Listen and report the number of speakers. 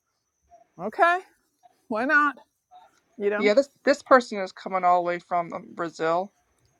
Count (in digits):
2